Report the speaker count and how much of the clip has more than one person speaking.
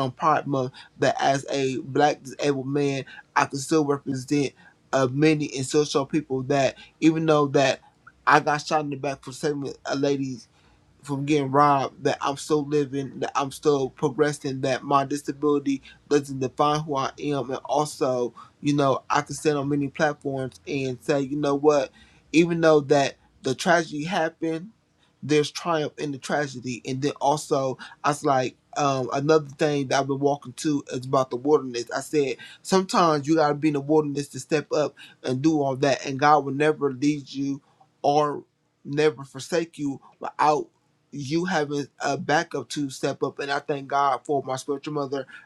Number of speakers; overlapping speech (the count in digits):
1, no overlap